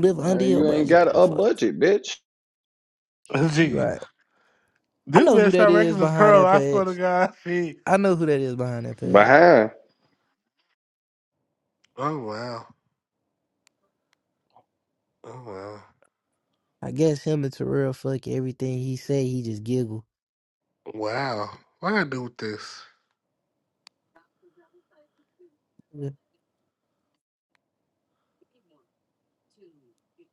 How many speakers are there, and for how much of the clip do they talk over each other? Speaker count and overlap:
three, about 11%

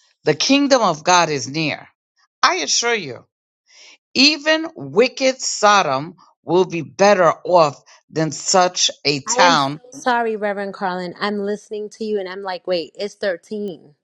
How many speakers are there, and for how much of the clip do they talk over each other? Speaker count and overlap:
two, about 4%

